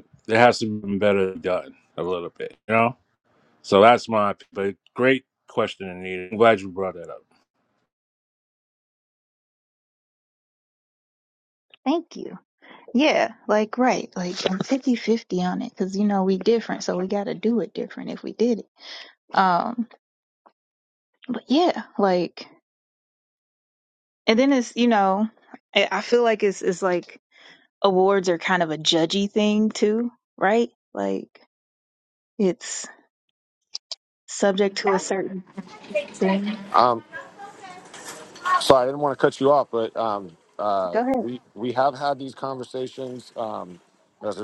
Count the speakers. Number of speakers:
3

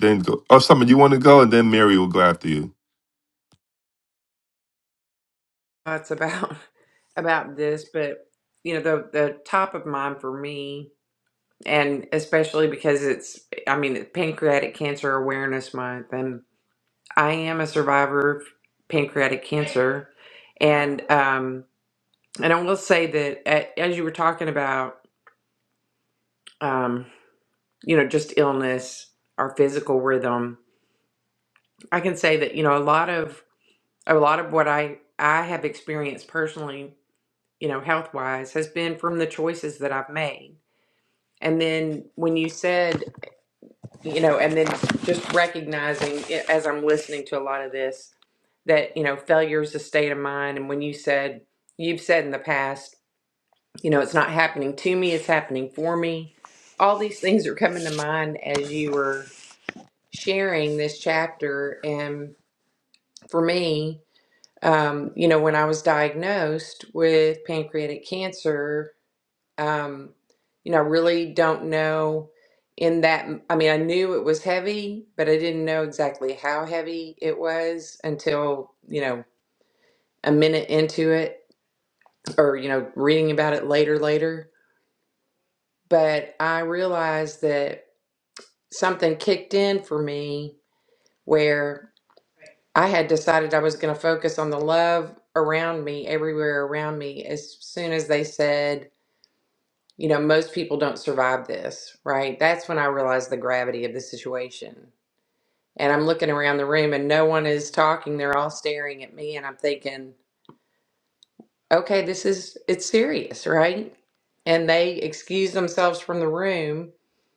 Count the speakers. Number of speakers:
2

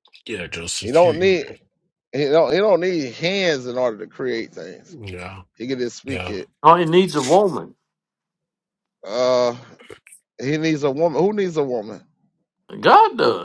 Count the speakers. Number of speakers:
3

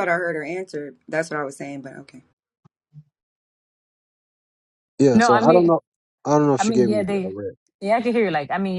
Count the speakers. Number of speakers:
3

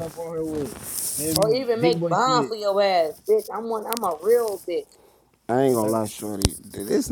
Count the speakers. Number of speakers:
3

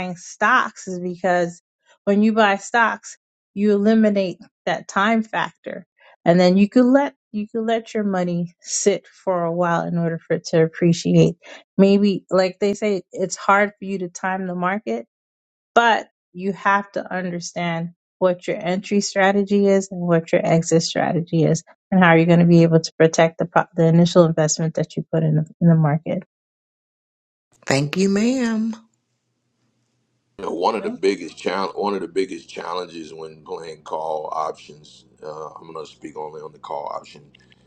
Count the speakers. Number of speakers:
3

